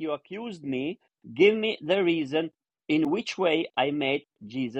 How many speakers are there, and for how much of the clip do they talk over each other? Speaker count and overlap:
one, no overlap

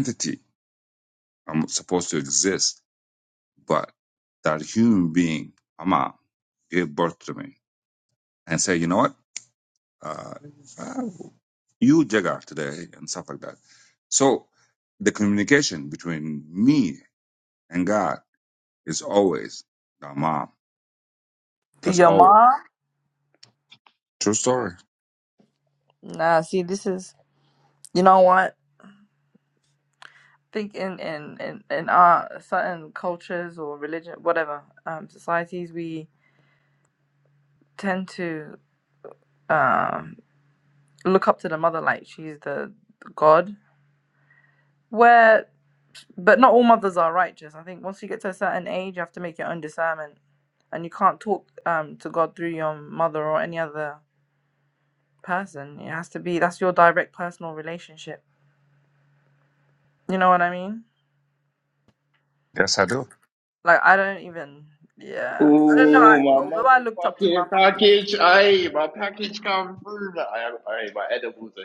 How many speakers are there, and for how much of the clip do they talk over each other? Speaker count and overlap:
three, about 4%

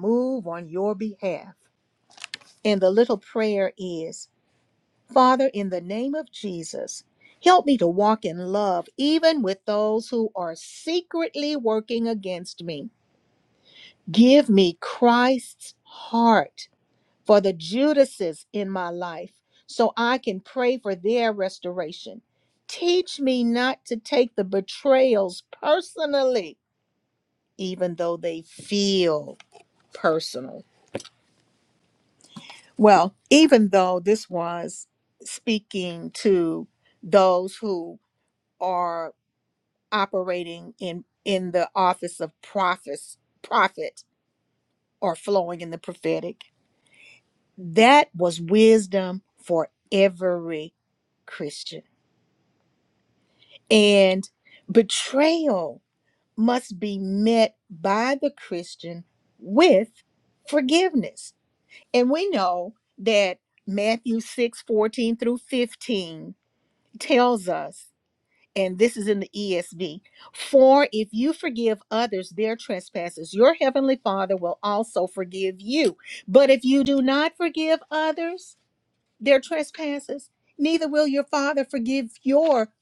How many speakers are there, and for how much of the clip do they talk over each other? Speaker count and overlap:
one, no overlap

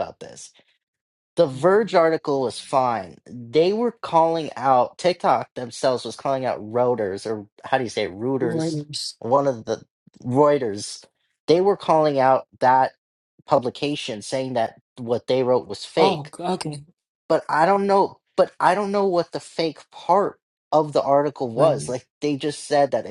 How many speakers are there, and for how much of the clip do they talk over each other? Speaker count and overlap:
two, about 4%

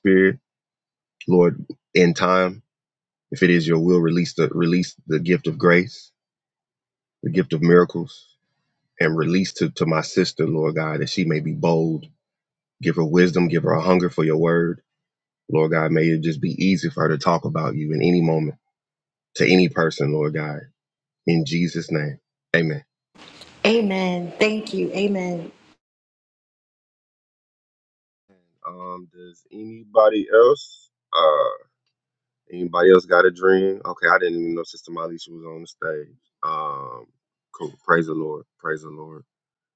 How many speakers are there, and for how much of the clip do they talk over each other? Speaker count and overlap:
two, no overlap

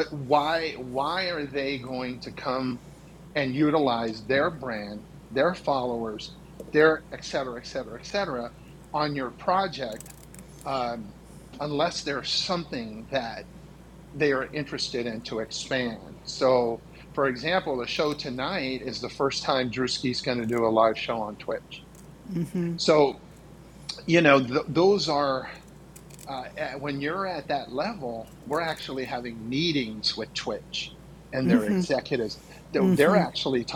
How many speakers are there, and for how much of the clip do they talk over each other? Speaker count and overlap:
one, no overlap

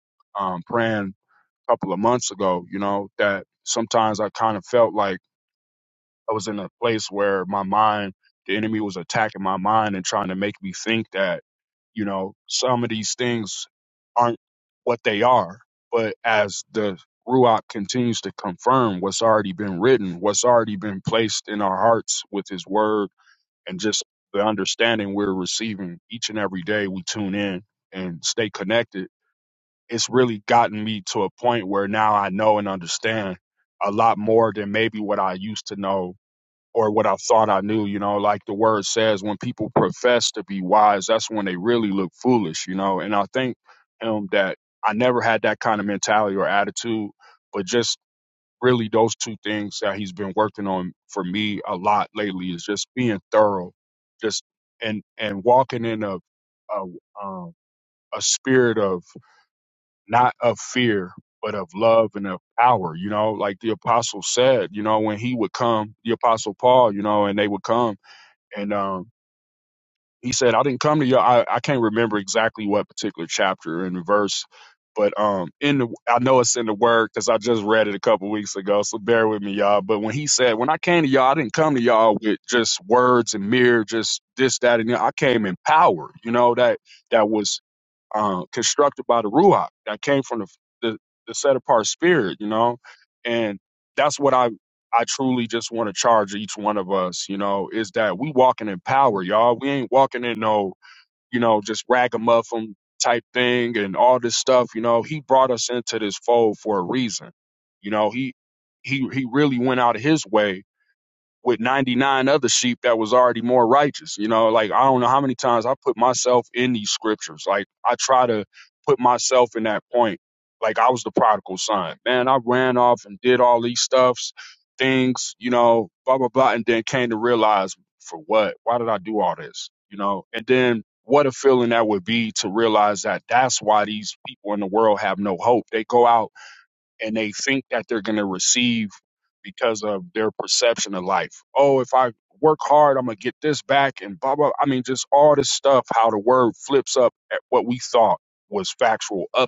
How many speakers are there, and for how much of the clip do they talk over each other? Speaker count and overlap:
one, no overlap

